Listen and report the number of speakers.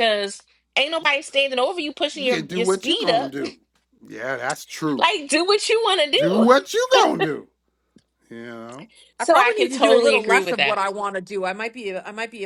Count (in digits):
3